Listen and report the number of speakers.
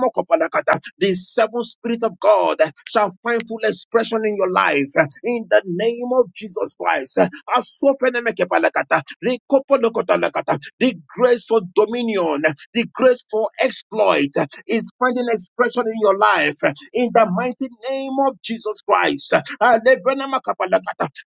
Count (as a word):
one